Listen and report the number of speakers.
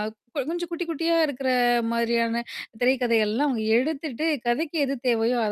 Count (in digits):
1